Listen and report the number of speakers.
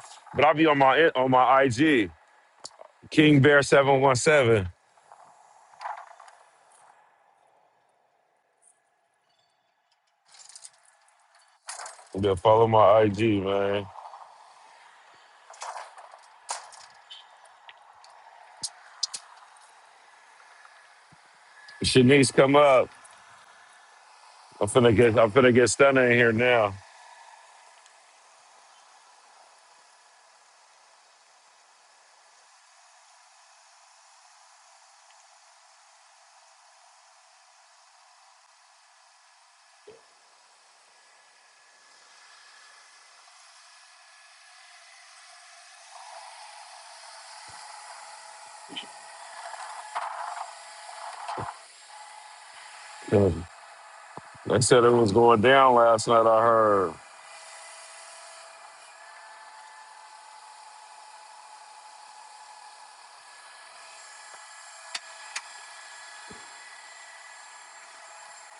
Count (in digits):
1